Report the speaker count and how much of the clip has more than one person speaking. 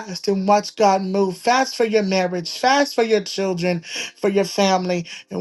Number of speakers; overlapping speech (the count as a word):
one, no overlap